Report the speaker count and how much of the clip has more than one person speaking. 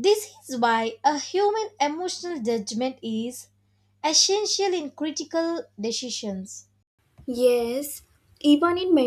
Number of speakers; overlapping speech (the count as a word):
two, no overlap